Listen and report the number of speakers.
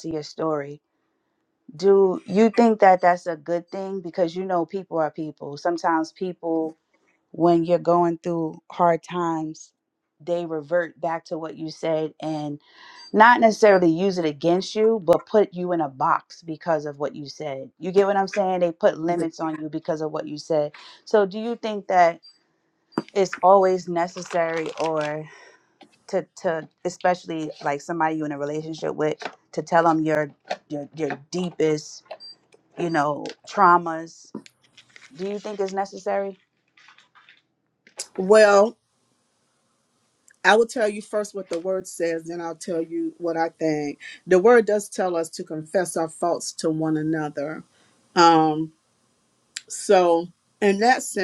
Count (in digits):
2